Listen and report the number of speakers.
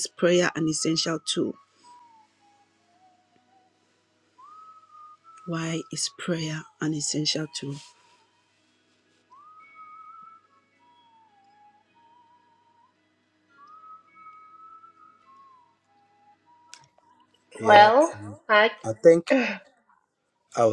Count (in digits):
3